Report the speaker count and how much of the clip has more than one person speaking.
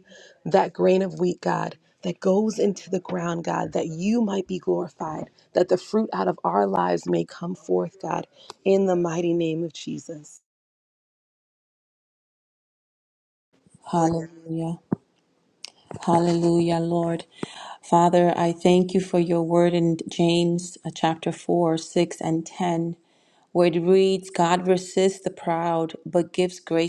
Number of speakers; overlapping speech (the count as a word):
two, no overlap